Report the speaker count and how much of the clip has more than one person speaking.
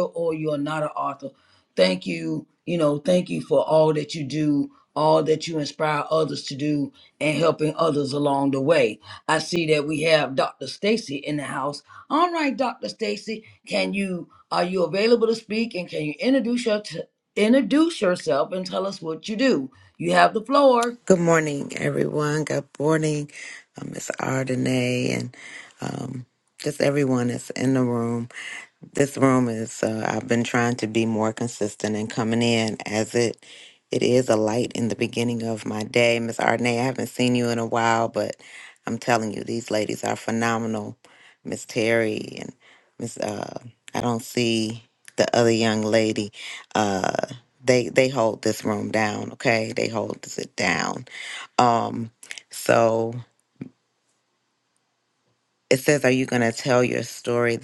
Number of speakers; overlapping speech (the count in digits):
2, no overlap